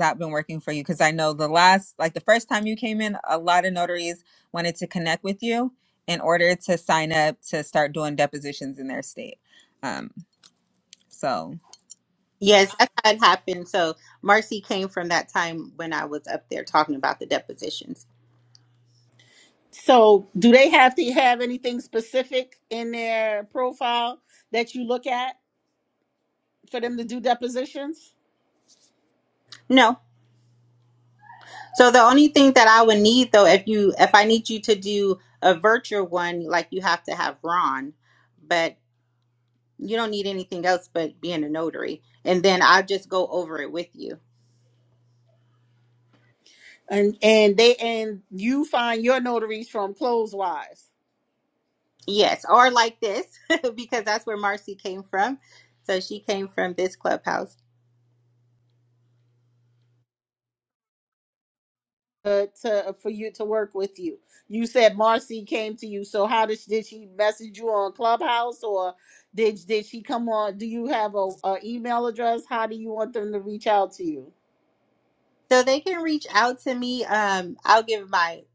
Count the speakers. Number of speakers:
3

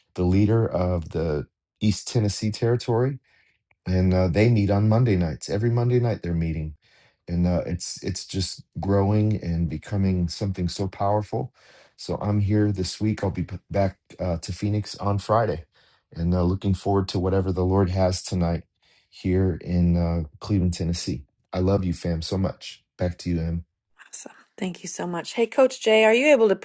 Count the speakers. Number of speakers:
2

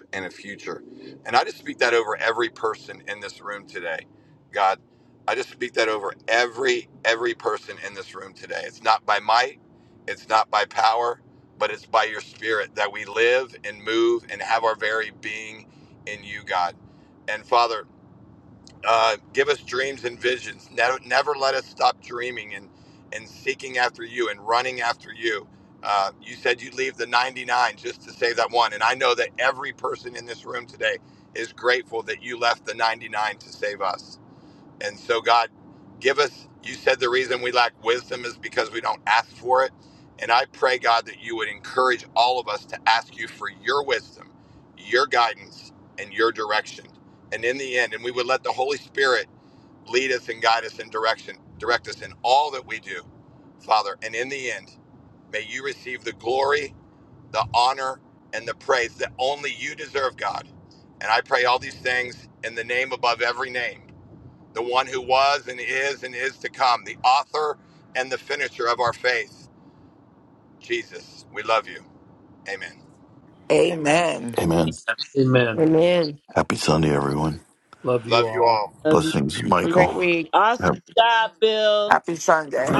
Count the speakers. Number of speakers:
6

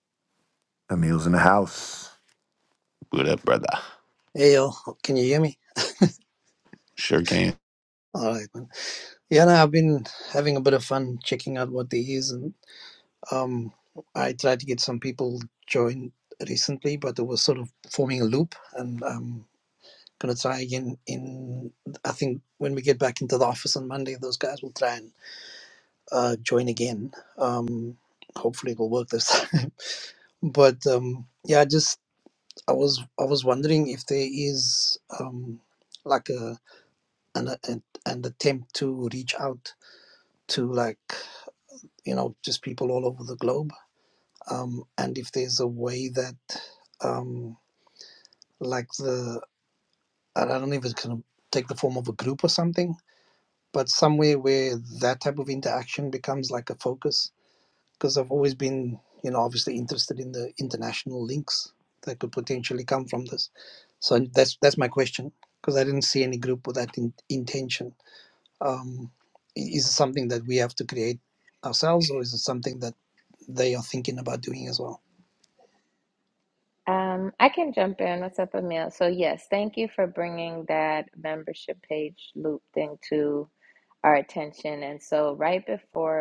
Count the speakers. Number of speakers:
3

